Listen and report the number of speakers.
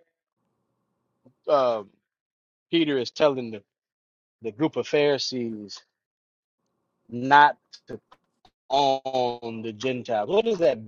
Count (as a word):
one